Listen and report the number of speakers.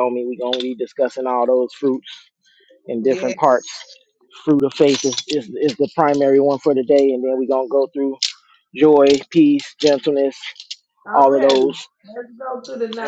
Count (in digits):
2